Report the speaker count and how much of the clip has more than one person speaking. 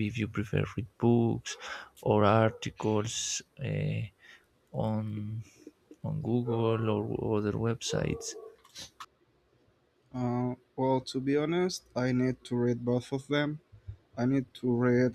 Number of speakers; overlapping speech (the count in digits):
2, no overlap